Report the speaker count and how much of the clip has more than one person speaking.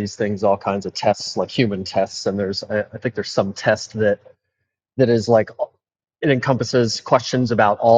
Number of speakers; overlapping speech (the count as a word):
one, no overlap